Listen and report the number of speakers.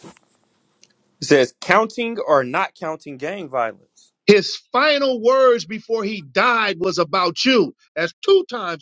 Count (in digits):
2